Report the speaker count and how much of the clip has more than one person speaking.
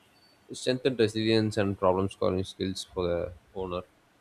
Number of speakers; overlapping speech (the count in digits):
1, no overlap